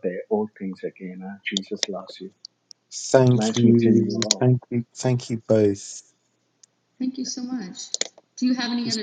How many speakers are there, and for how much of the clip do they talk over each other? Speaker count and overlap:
3, about 14%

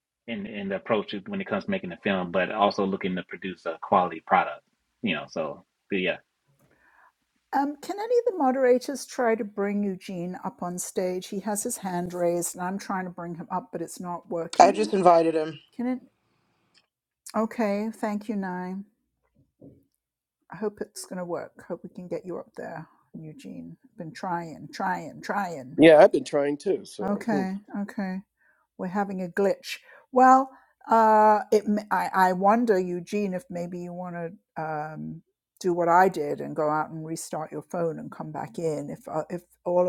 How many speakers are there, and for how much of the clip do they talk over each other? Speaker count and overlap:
4, about 2%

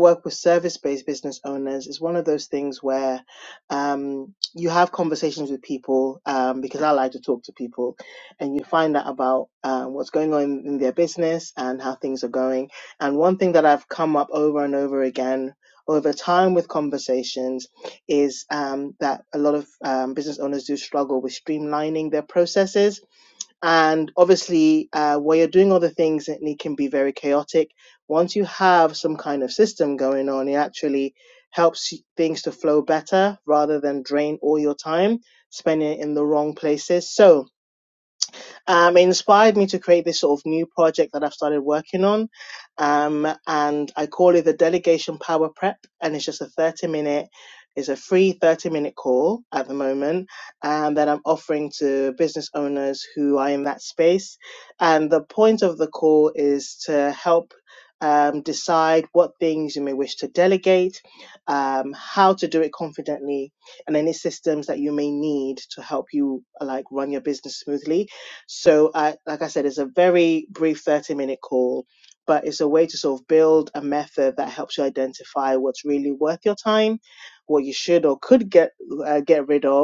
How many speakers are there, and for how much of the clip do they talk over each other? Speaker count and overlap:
1, no overlap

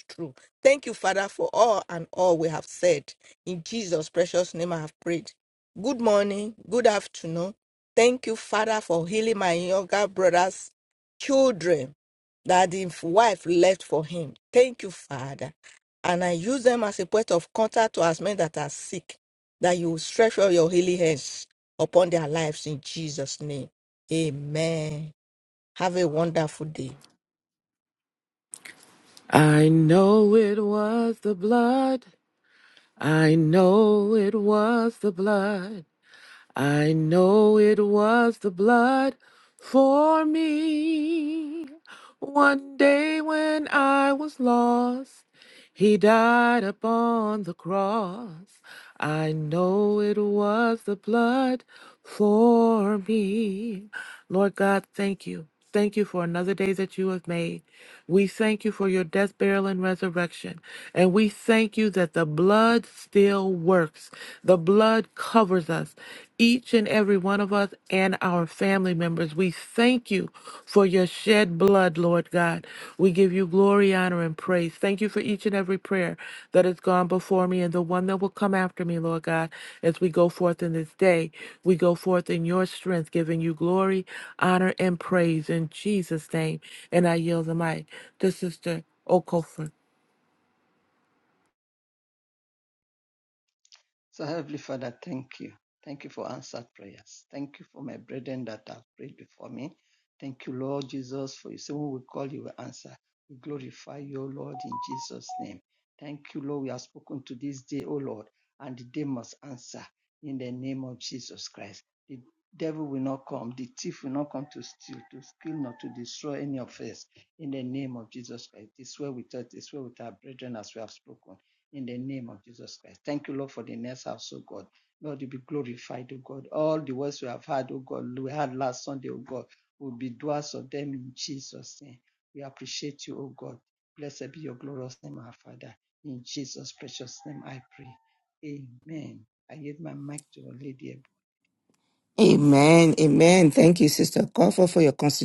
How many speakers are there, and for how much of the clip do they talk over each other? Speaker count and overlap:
4, no overlap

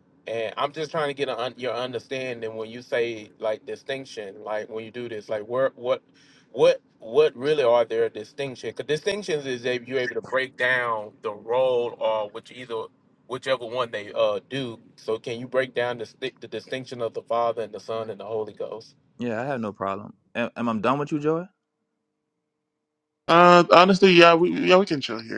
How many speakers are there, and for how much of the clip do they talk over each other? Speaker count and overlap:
3, no overlap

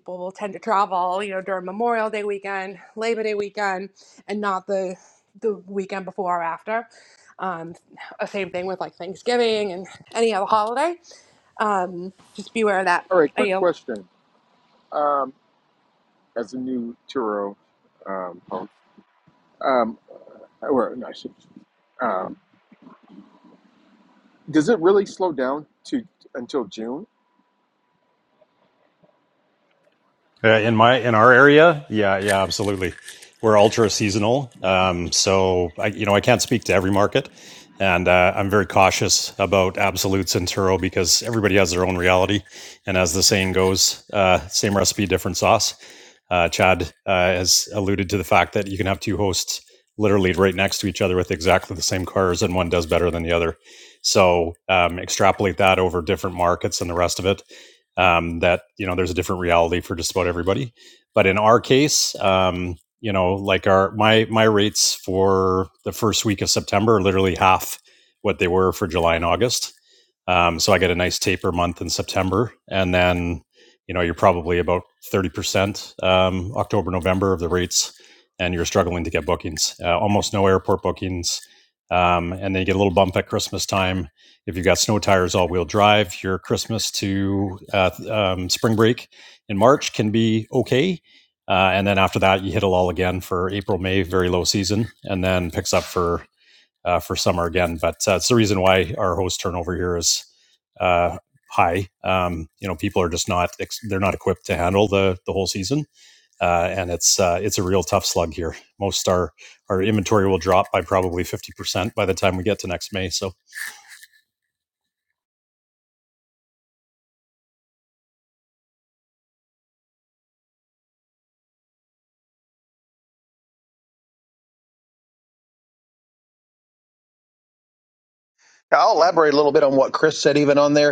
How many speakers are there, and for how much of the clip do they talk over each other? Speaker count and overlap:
4, no overlap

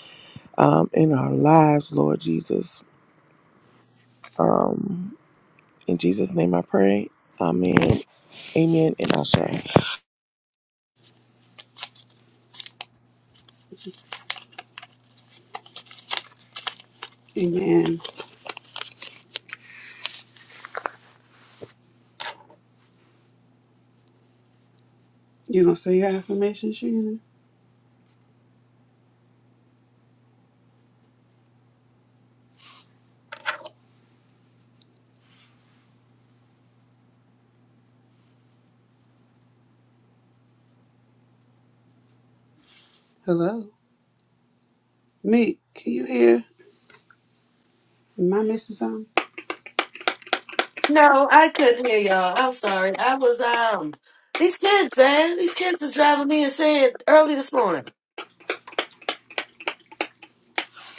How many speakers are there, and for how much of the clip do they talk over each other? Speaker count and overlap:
3, no overlap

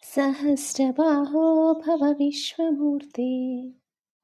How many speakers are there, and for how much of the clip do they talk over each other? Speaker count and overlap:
1, no overlap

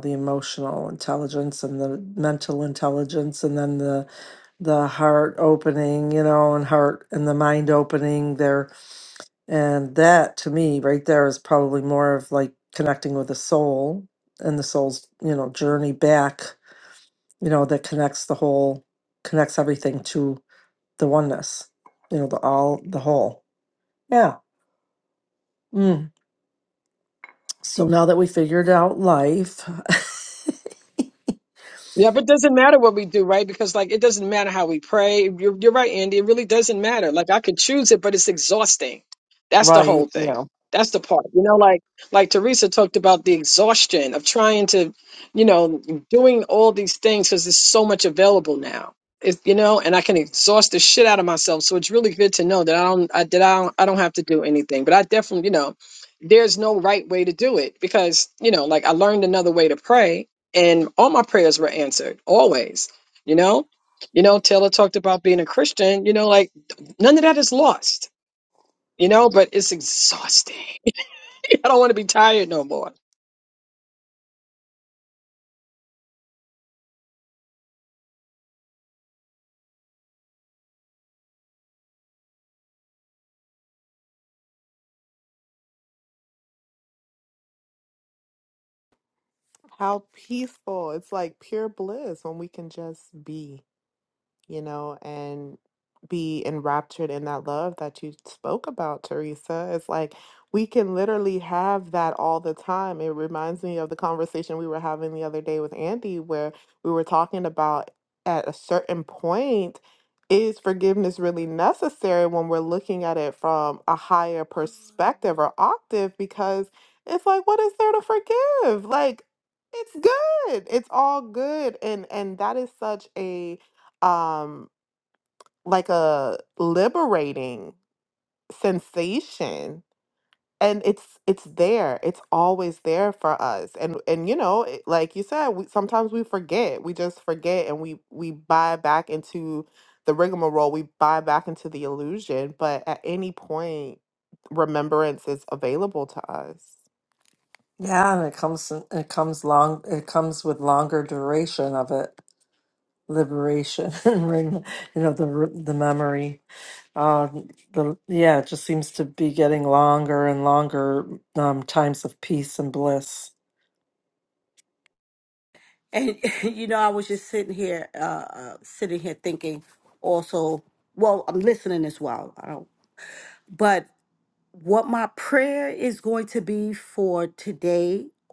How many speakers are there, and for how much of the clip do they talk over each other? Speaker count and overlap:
4, under 1%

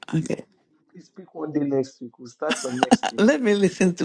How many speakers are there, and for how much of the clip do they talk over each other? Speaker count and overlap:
2, about 3%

